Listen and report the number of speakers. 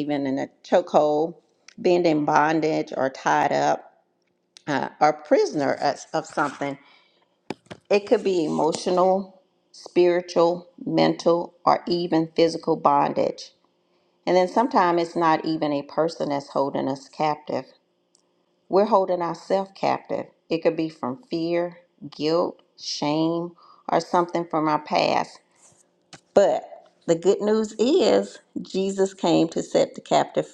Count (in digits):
1